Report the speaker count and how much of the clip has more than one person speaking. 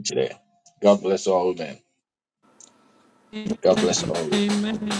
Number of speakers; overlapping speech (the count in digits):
2, about 15%